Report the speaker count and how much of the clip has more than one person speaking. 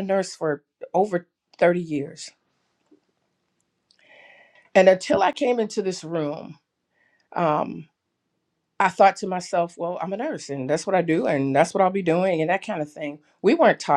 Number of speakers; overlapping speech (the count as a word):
one, no overlap